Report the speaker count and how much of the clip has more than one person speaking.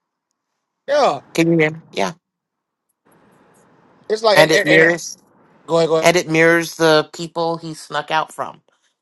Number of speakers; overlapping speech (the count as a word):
two, about 7%